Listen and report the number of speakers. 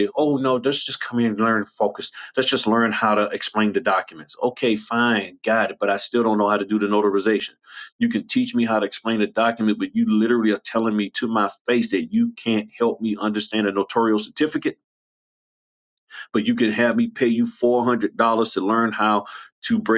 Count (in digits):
1